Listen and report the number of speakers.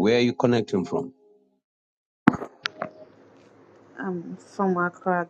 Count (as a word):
two